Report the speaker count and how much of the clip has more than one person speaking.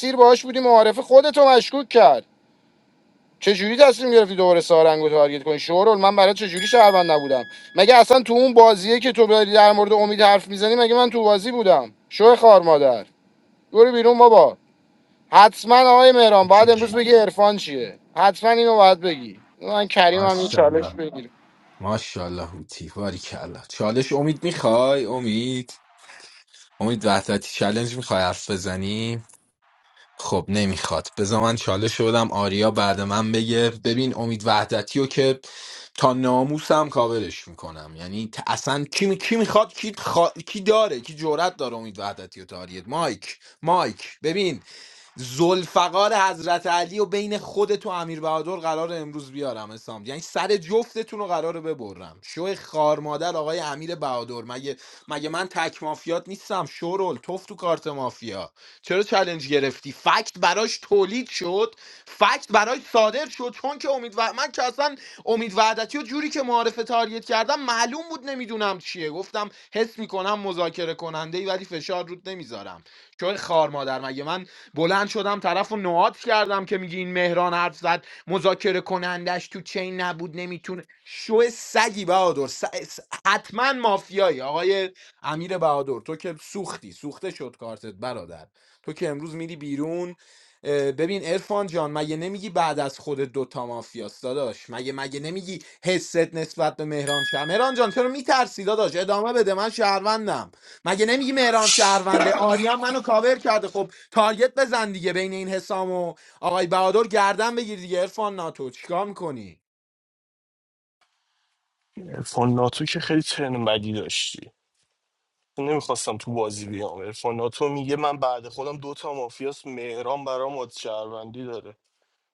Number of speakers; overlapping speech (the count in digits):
3, about 1%